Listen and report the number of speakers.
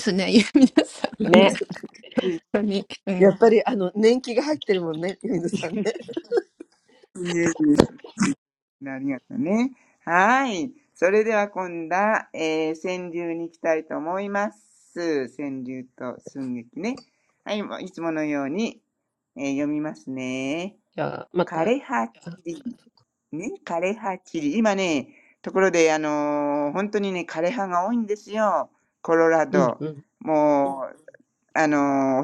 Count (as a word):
four